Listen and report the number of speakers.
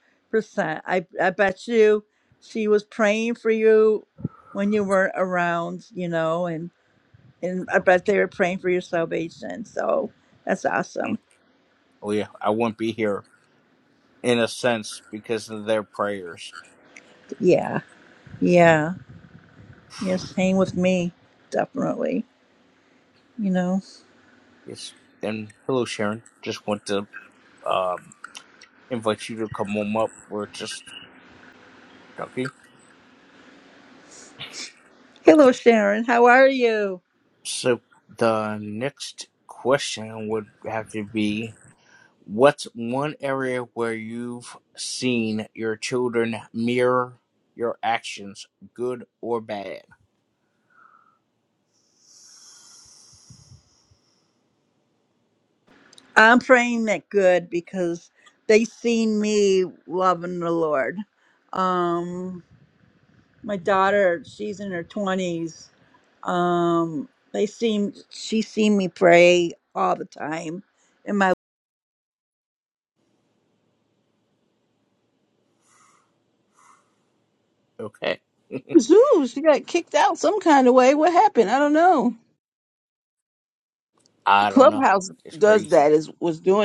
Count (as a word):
three